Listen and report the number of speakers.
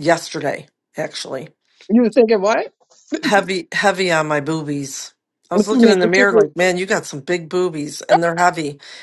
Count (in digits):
2